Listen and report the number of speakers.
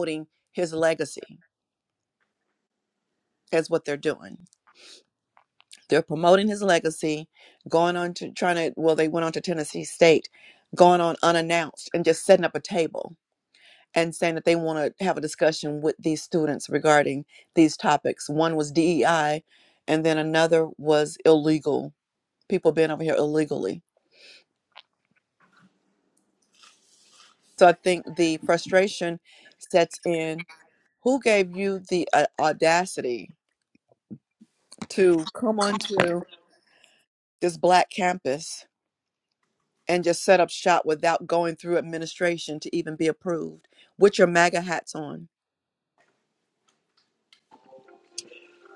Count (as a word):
one